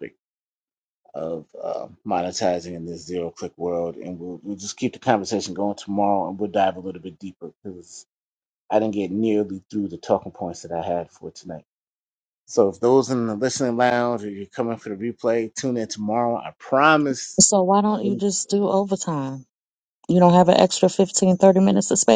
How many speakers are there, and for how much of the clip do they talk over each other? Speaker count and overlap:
2, about 1%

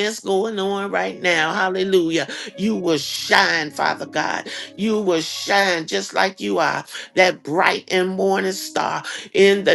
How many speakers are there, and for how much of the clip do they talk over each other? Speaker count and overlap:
1, no overlap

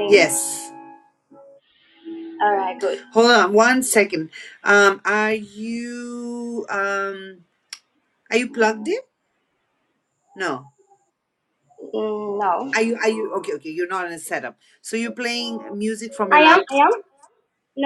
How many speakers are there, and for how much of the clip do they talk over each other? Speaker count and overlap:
2, about 4%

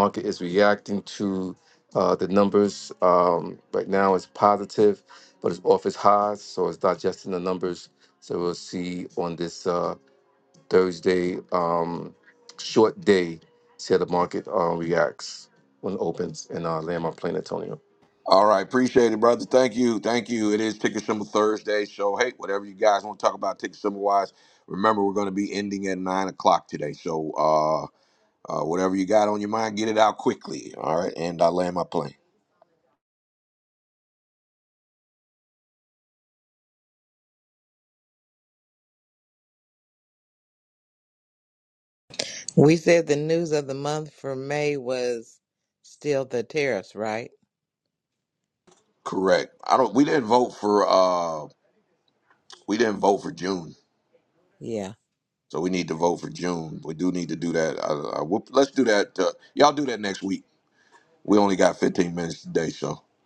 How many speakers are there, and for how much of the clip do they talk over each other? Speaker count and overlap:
3, no overlap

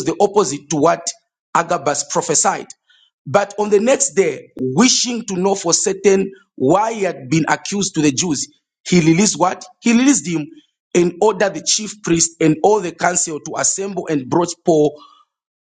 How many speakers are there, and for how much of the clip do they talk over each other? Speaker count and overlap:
1, no overlap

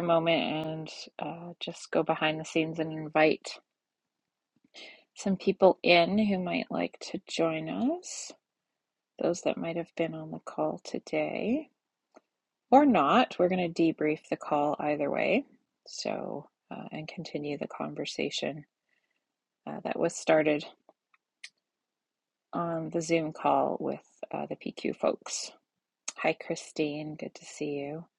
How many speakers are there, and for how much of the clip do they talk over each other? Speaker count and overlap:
1, no overlap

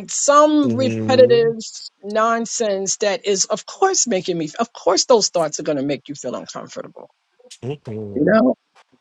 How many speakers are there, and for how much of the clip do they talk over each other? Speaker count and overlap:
2, about 12%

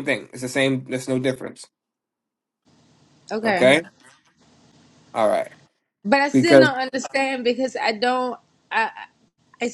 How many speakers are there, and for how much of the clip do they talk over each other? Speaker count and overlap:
2, about 7%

